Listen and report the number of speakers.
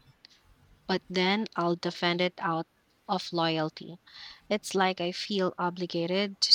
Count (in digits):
1